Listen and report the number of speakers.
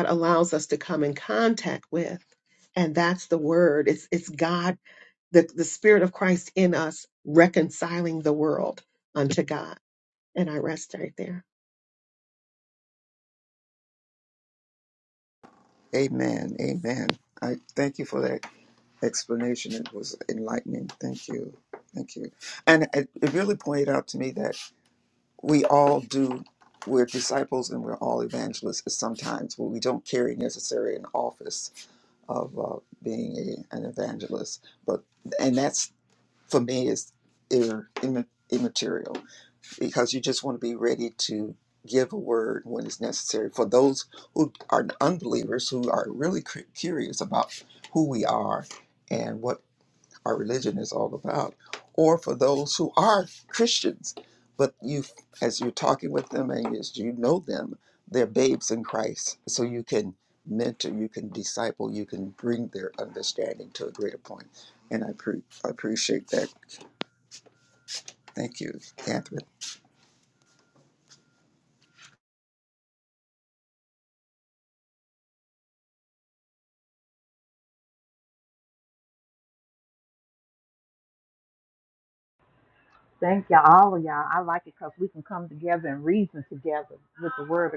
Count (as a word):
three